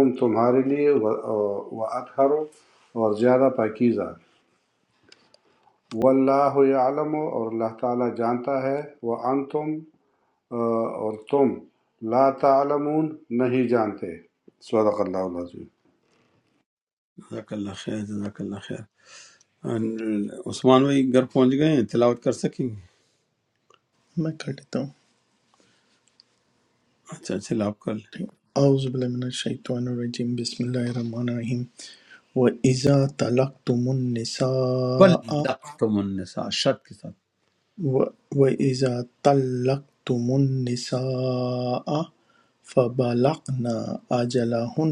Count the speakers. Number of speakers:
3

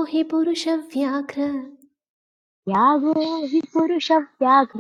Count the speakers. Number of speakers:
2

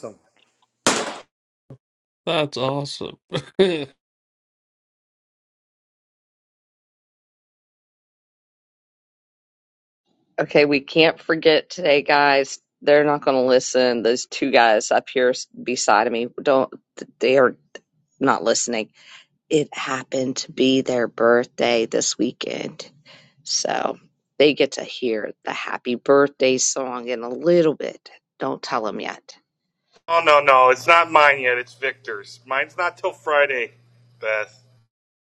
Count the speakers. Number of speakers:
3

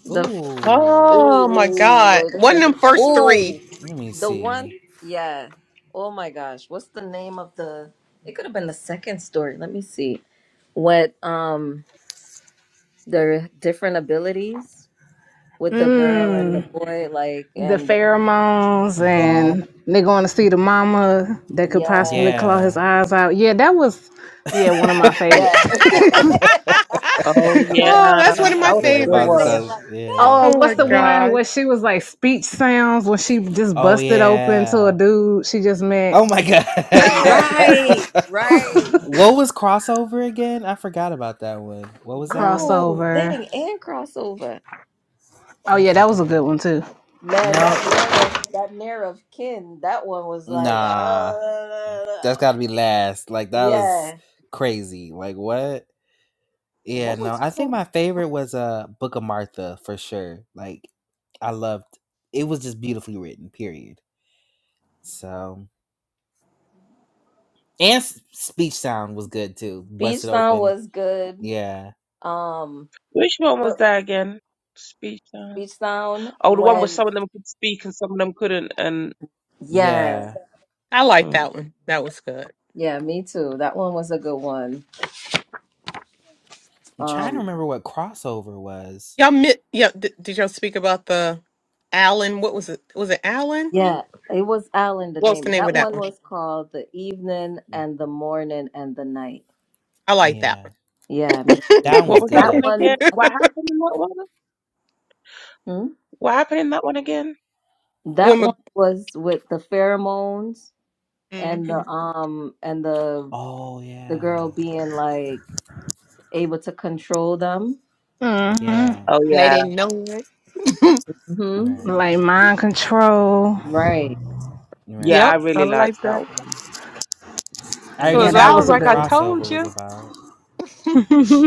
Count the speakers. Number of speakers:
5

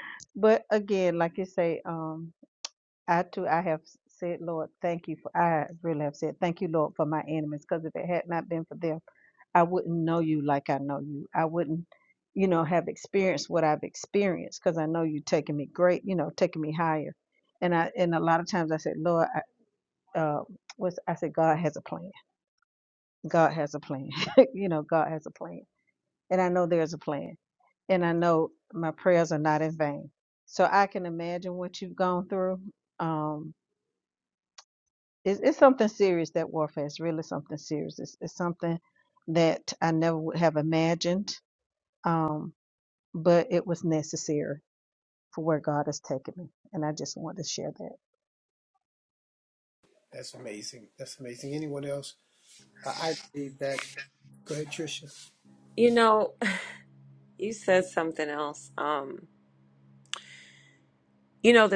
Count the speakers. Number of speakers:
3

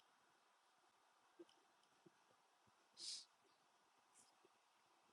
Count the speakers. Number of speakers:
0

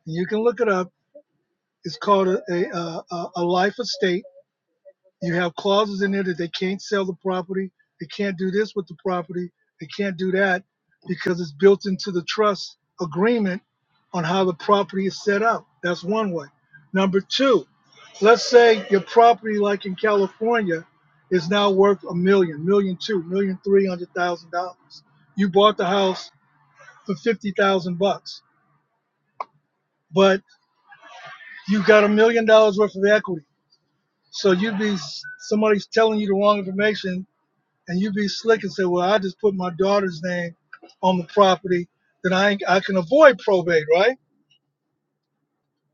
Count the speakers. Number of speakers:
1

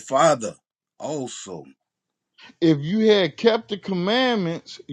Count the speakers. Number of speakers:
2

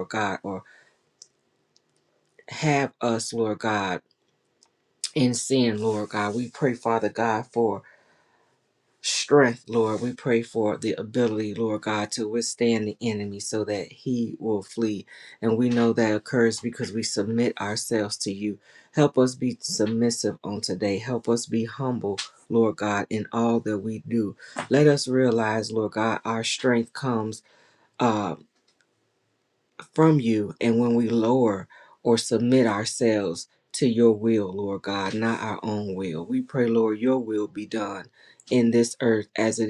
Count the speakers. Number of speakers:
1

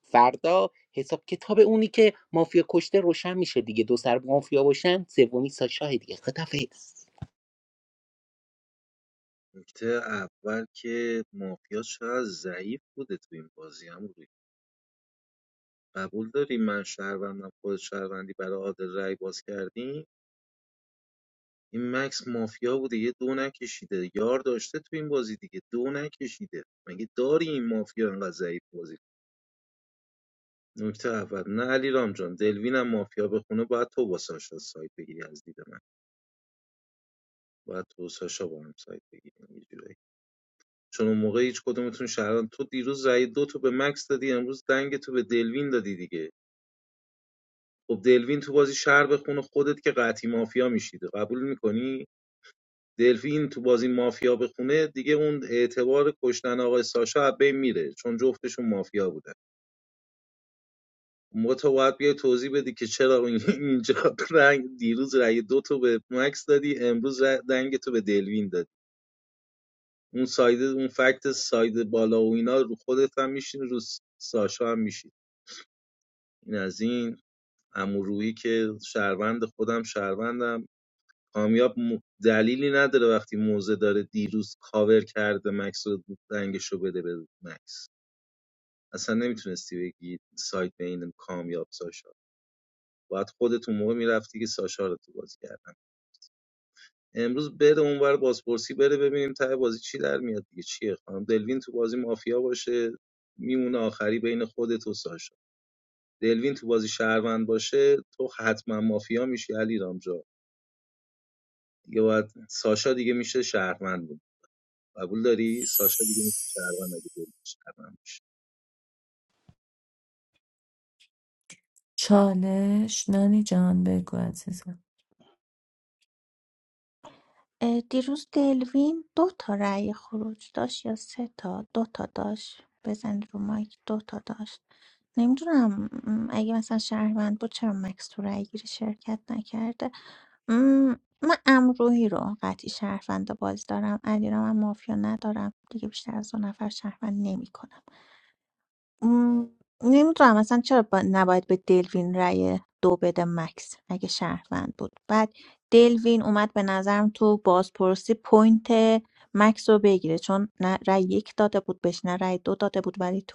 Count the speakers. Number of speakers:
4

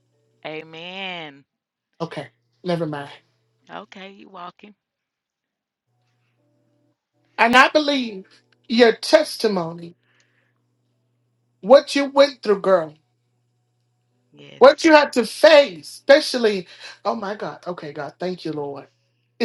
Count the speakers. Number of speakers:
2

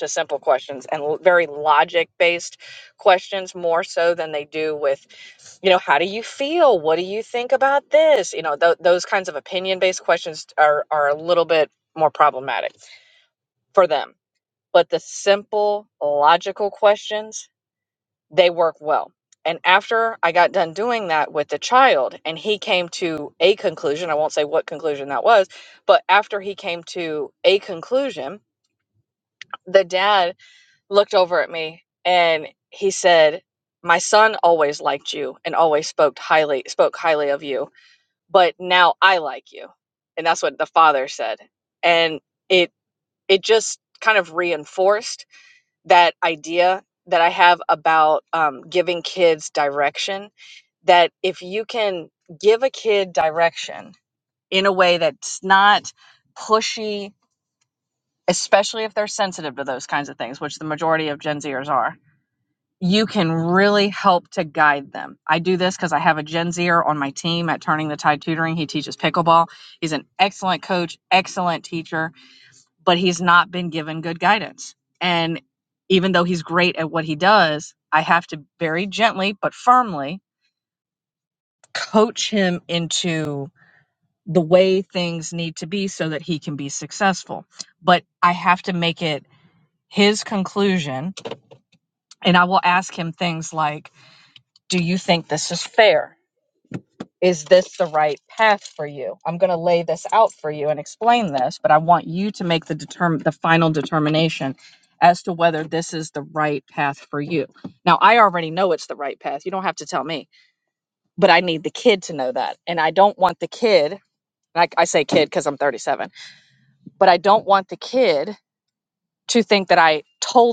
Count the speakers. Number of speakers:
1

